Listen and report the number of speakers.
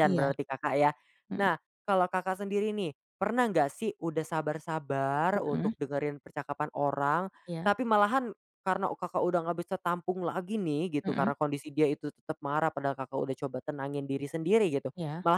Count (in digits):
2